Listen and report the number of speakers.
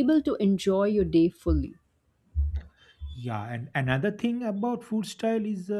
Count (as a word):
two